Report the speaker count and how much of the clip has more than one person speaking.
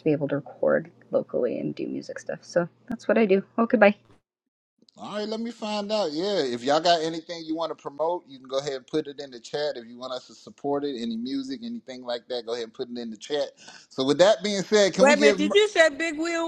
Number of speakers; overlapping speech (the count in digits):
3, about 4%